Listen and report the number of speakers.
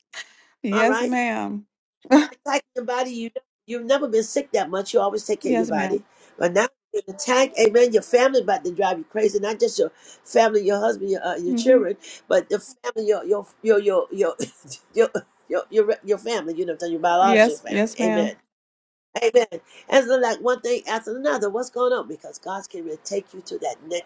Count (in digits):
2